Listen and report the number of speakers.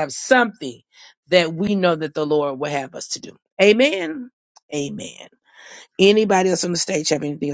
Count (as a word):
one